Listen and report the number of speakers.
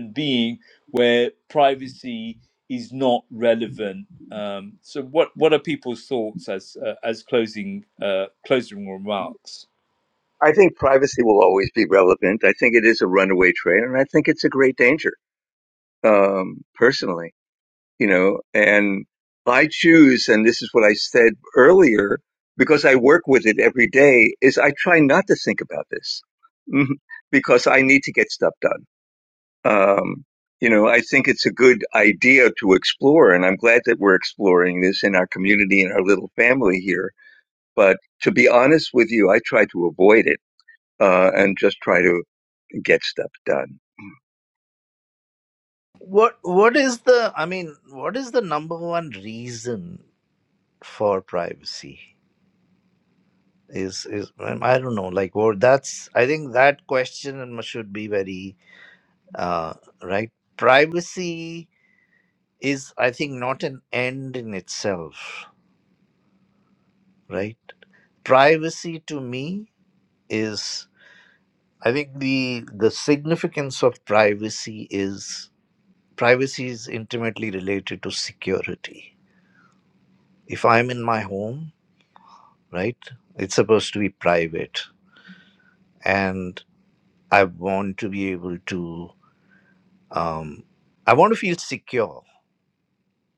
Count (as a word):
three